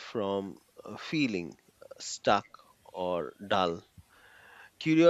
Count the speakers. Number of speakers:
1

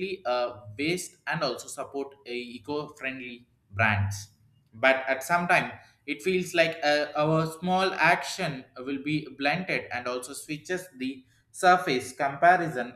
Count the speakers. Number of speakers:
1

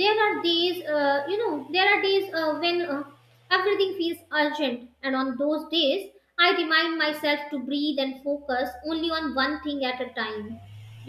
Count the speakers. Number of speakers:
1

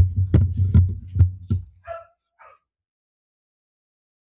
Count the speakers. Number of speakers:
0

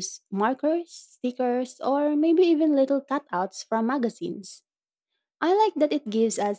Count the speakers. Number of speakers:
1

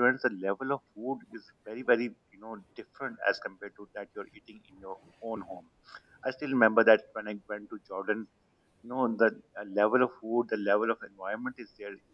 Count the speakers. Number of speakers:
1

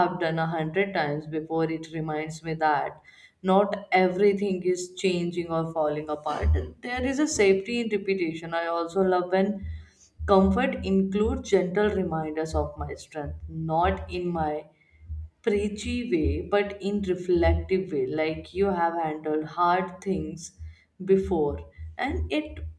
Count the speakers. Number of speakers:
1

